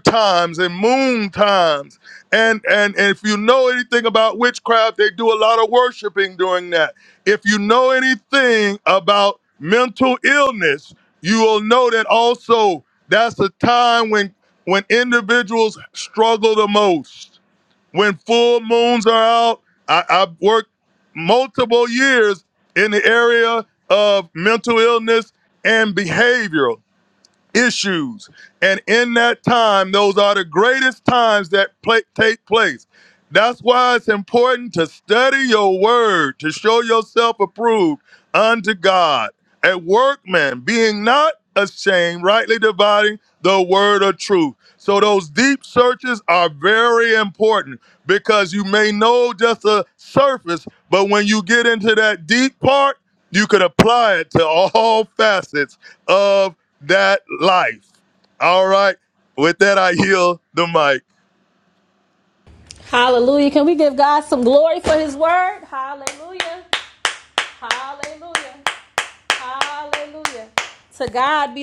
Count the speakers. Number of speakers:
2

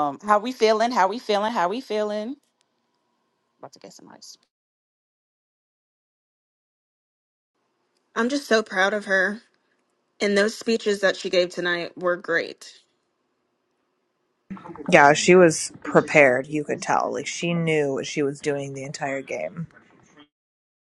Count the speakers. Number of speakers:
3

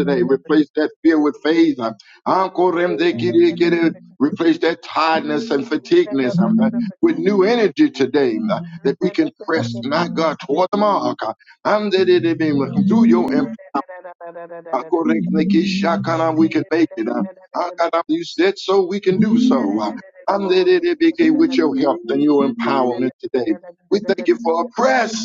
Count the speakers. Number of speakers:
1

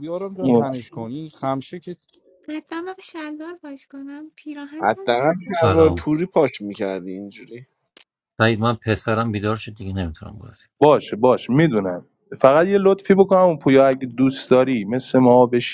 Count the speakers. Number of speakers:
5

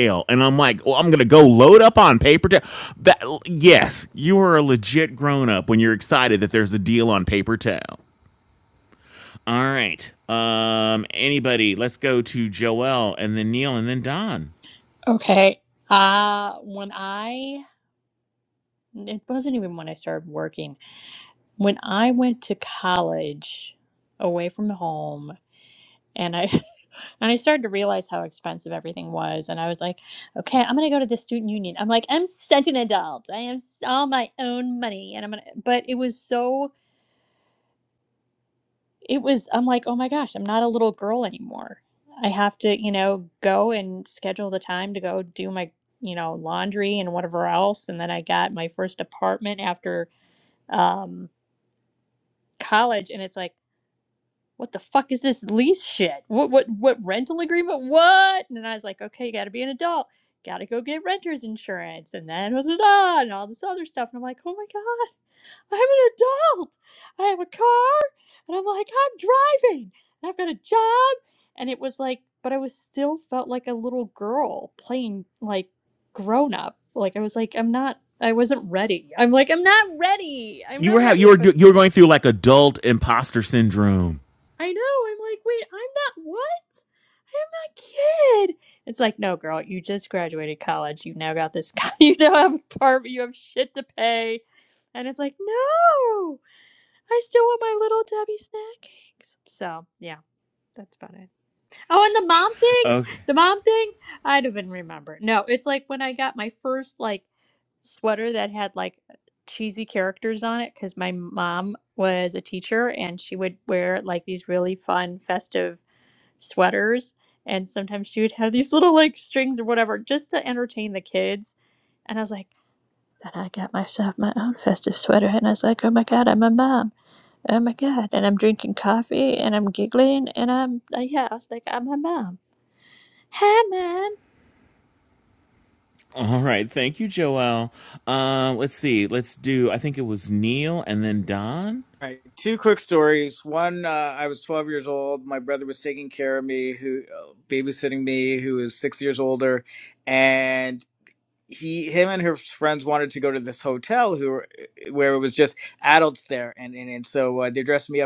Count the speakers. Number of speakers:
3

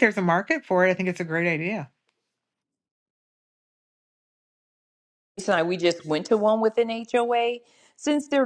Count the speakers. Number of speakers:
2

